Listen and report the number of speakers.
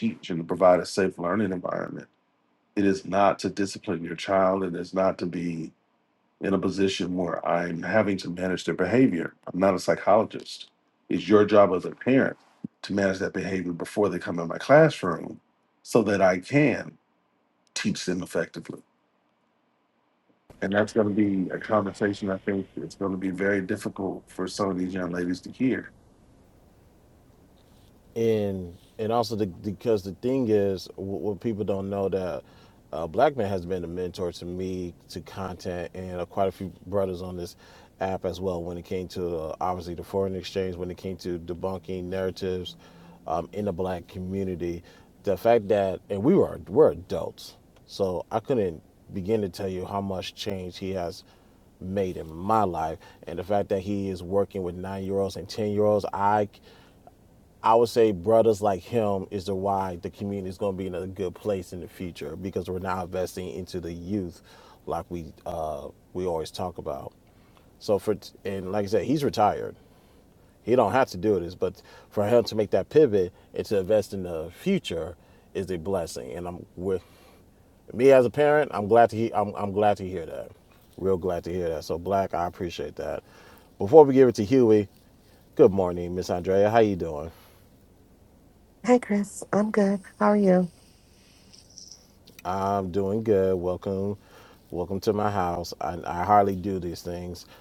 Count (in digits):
3